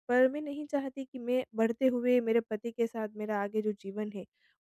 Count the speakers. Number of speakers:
1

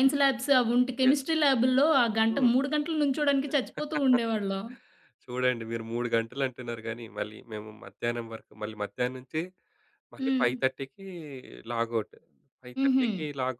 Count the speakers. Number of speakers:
2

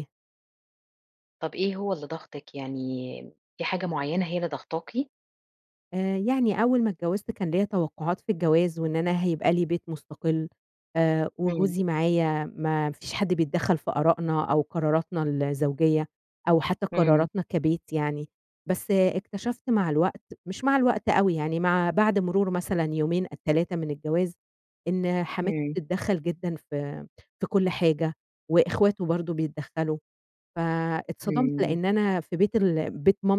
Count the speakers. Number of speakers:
2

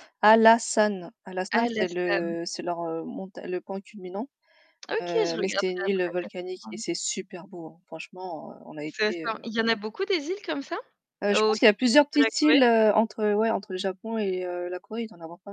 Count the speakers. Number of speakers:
2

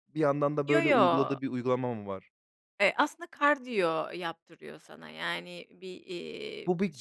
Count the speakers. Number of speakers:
2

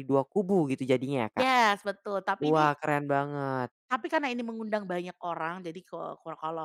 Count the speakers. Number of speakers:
2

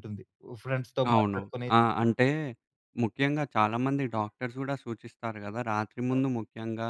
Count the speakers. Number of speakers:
2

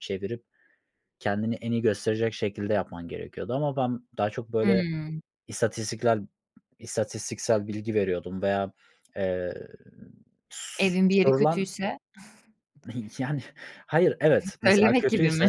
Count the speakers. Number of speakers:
2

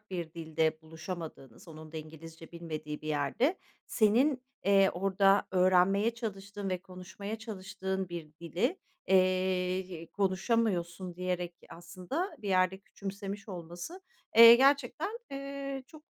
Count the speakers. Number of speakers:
1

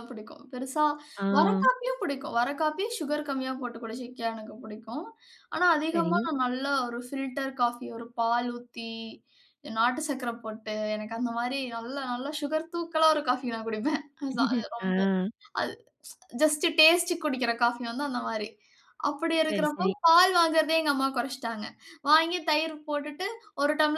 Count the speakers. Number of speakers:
2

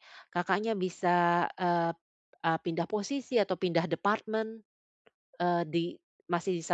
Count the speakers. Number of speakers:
1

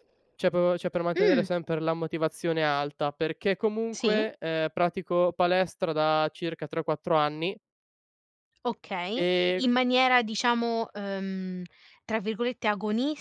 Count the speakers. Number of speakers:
2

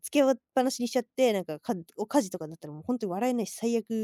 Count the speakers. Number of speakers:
1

